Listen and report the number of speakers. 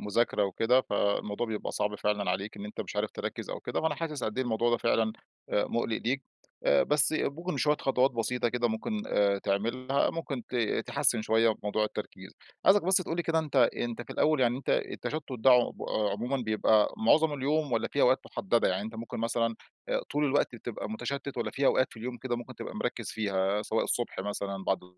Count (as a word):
one